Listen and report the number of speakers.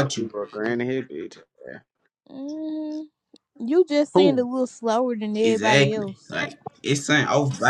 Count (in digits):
3